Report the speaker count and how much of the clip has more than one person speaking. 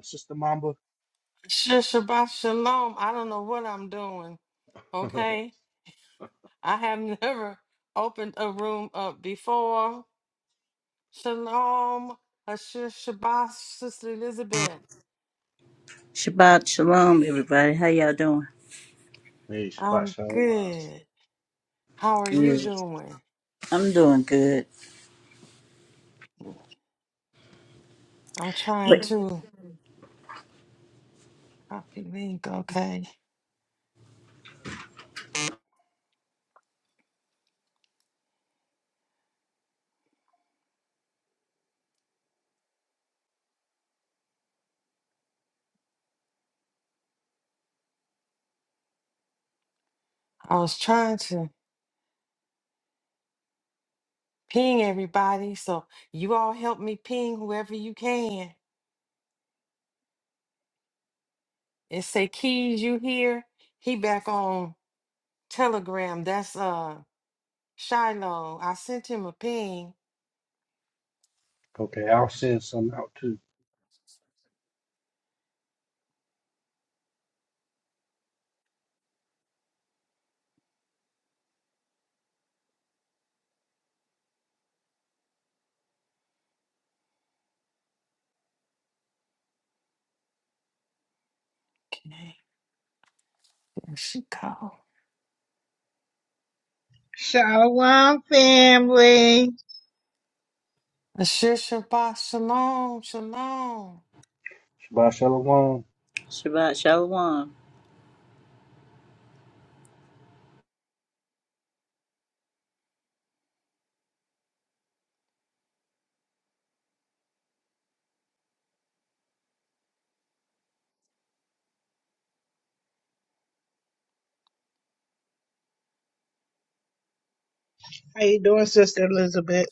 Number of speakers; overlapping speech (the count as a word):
four, about 2%